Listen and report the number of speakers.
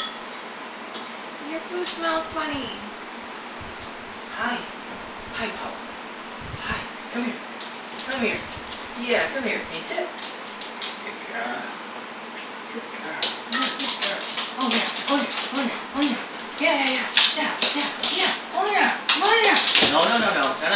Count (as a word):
two